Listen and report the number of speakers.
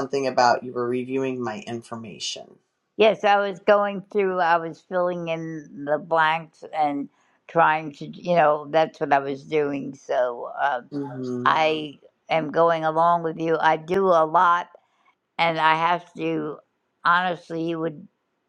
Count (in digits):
2